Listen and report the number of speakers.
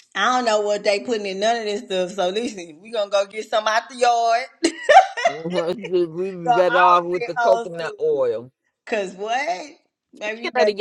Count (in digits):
2